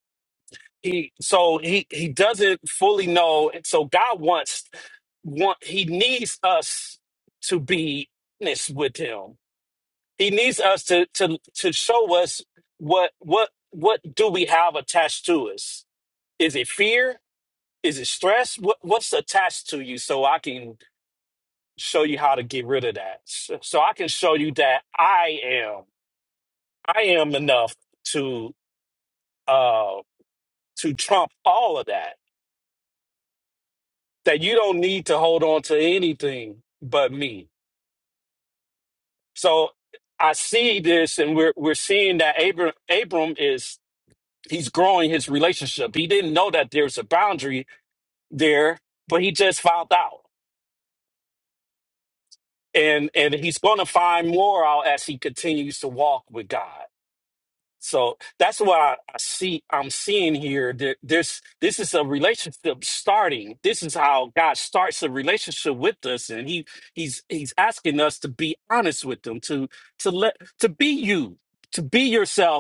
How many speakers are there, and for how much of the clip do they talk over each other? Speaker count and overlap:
1, no overlap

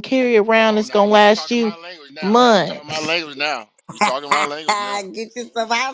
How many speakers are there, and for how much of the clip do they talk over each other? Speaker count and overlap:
3, about 36%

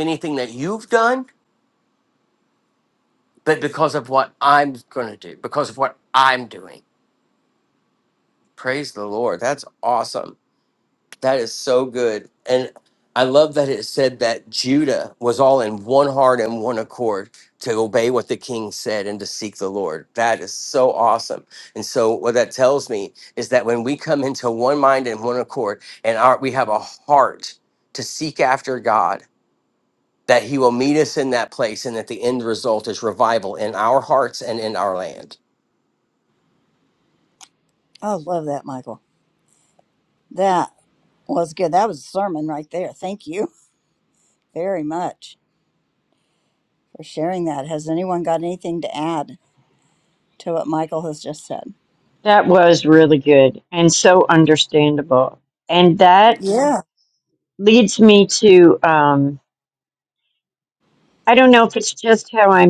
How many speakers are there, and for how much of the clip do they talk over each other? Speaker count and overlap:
3, under 1%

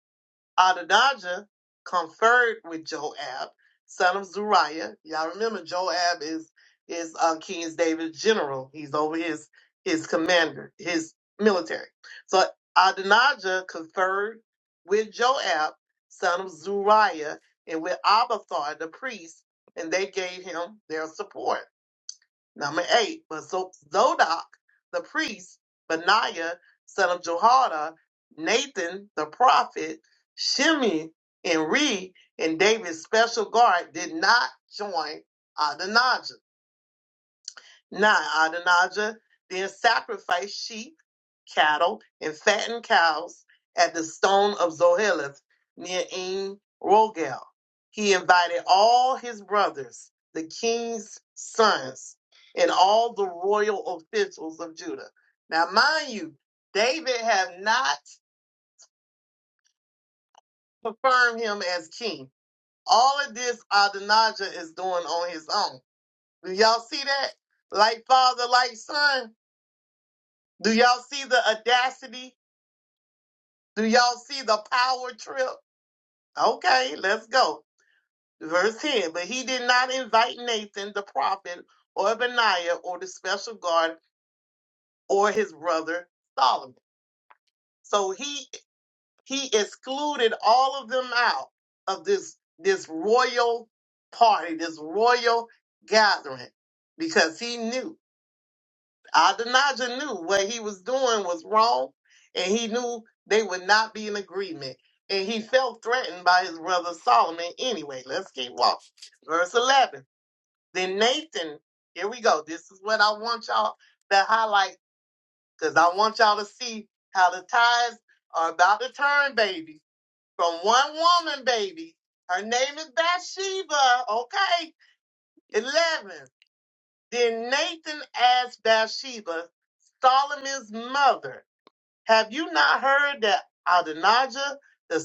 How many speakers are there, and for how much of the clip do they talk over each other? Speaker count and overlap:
1, no overlap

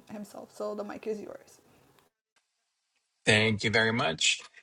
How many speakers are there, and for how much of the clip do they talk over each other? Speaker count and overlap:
2, no overlap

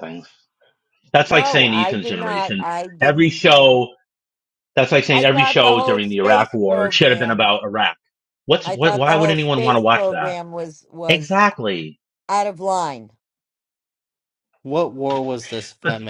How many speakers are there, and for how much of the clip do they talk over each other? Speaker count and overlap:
3, about 39%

